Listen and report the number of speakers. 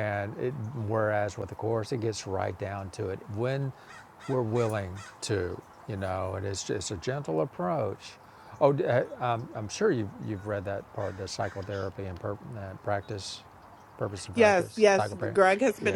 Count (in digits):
2